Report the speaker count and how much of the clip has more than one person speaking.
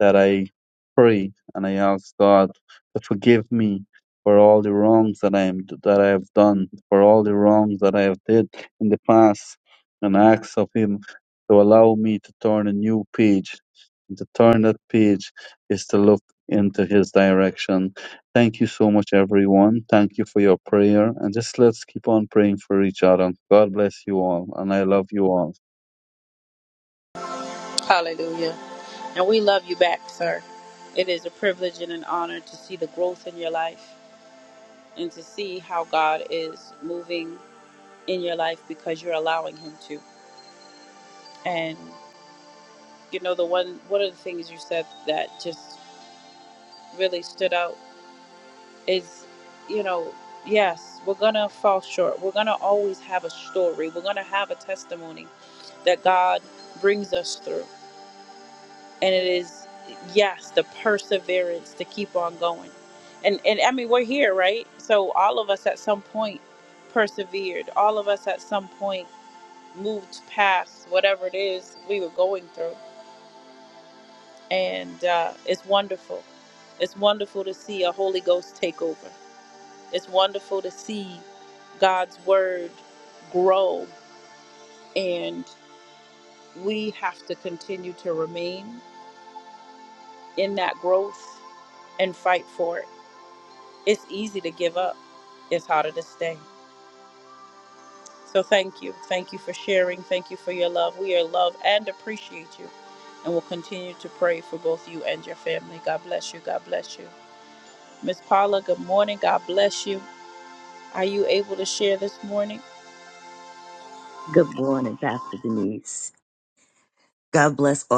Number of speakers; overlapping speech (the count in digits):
3, no overlap